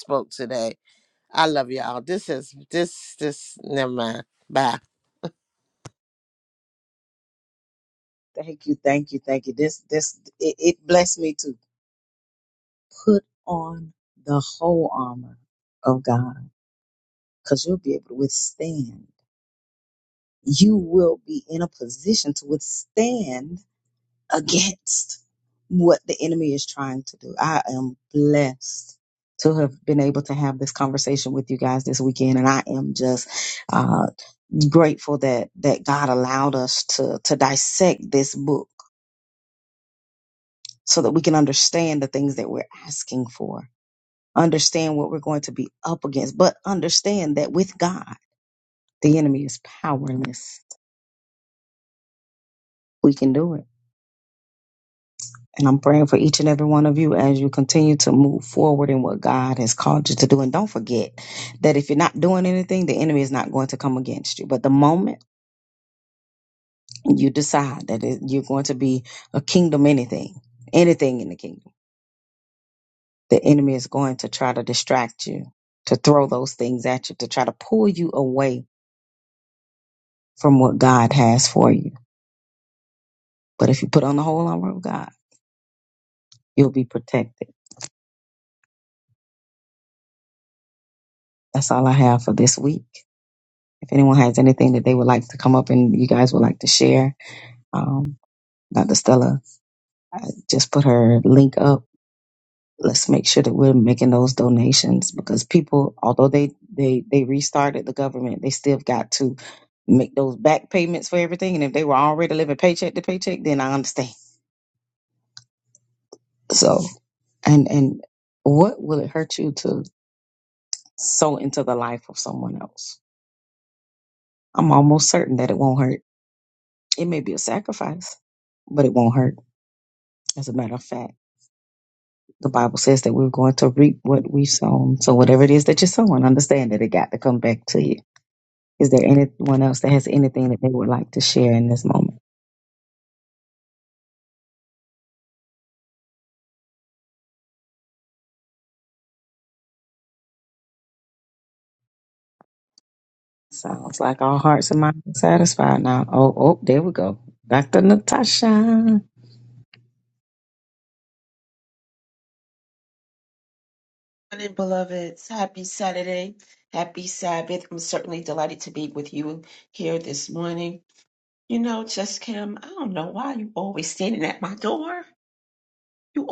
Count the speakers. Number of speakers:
three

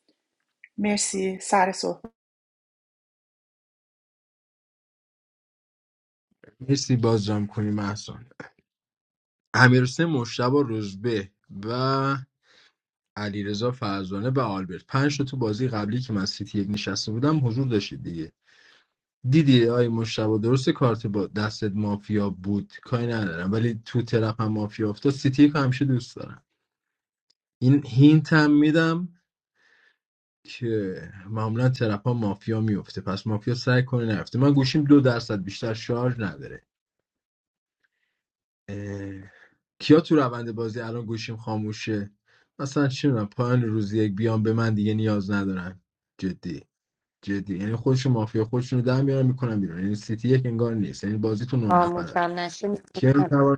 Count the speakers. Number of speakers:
three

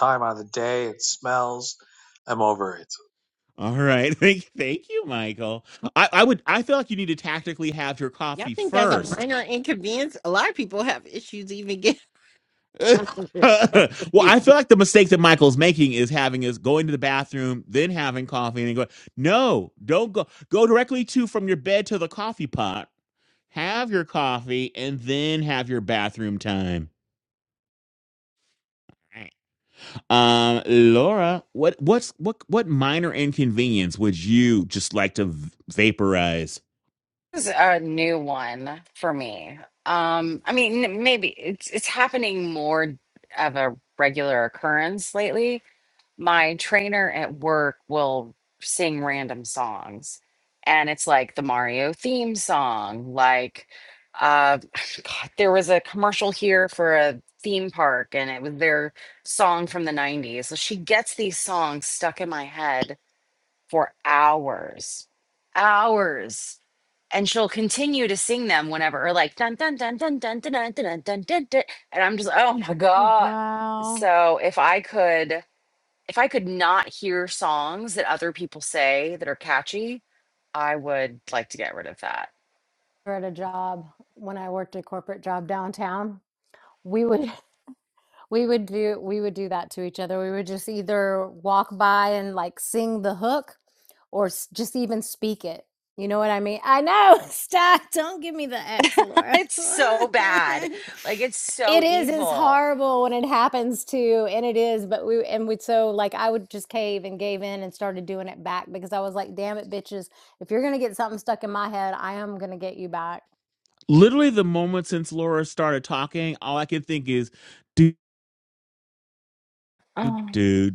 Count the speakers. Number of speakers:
five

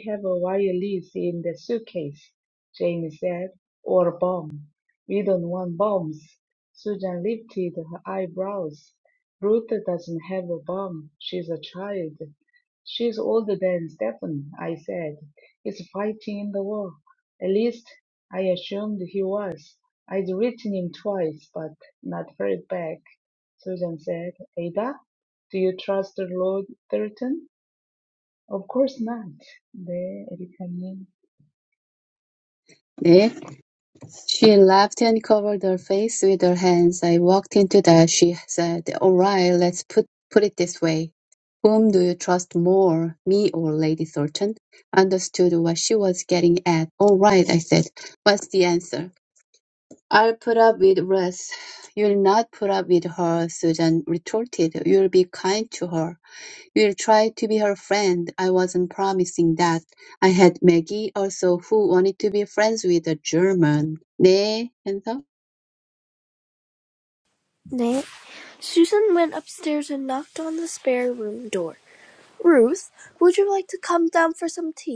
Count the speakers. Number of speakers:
three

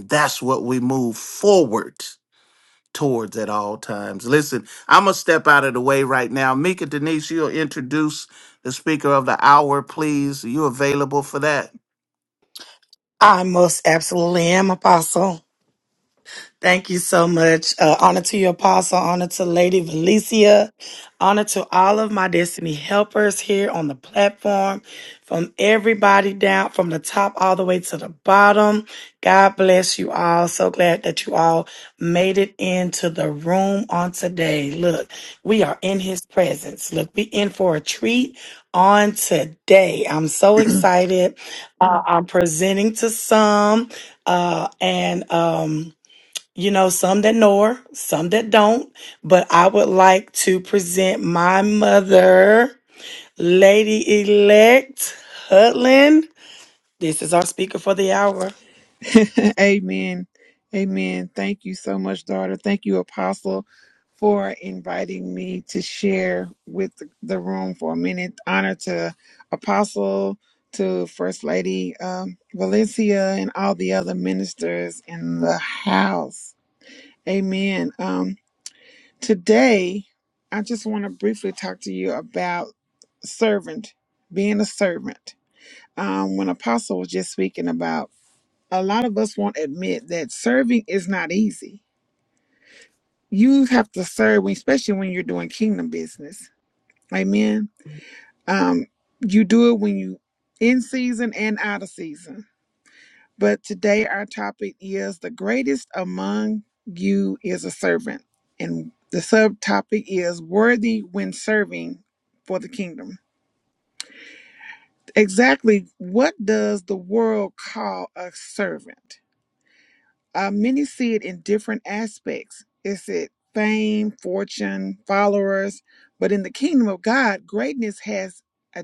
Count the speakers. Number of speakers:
three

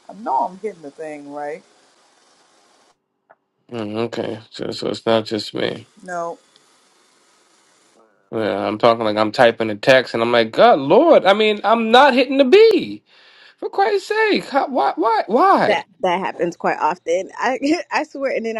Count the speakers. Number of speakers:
three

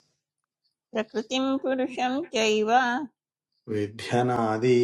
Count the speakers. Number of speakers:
two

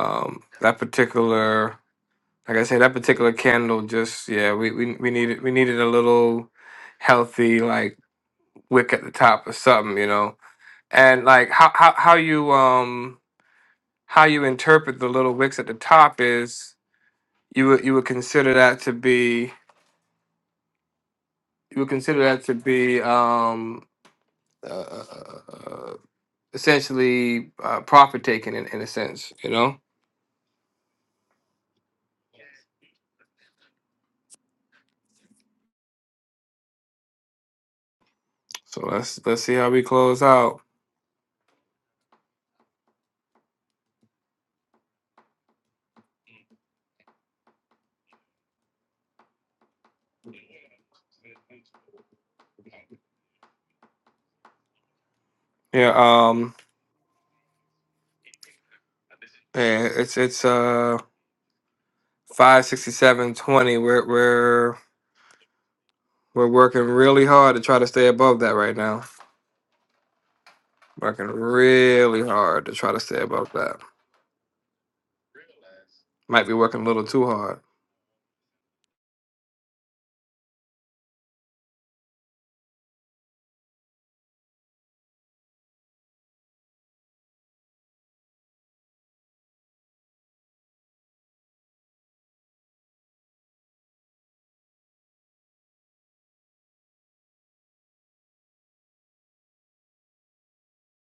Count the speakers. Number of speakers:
one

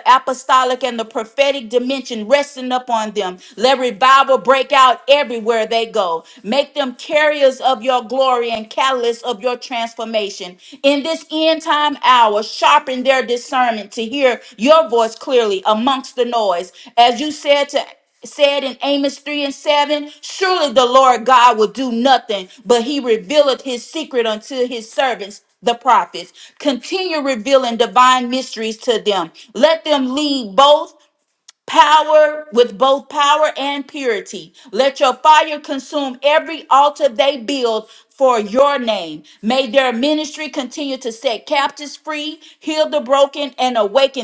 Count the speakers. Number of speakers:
one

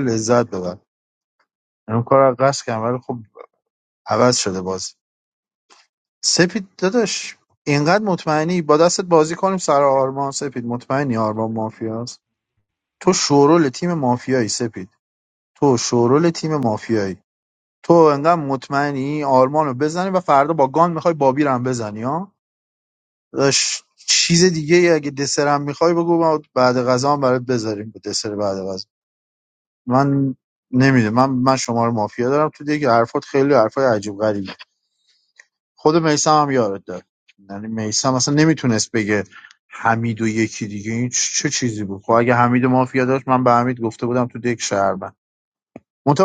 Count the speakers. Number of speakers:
one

